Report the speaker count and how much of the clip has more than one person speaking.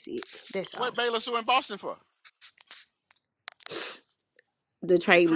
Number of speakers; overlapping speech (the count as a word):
two, about 9%